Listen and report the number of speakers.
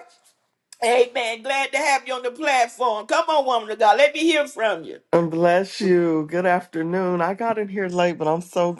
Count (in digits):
2